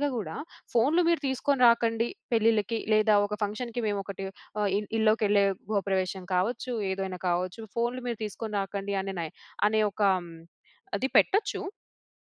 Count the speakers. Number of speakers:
one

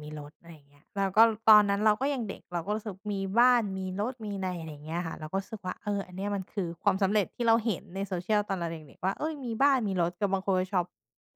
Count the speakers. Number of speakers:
one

